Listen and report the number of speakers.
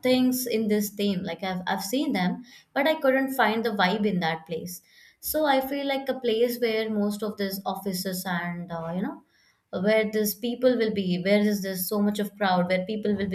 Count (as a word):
one